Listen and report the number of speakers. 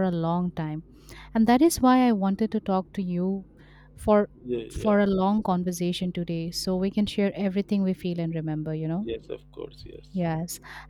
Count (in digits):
2